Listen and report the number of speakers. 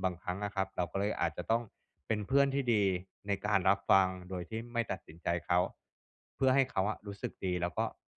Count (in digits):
1